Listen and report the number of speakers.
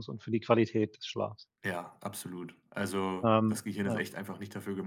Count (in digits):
2